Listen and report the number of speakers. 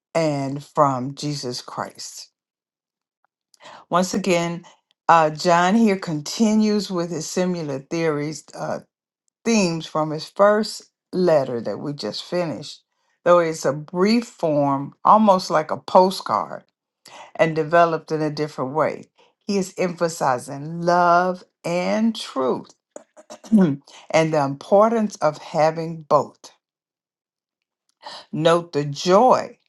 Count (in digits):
1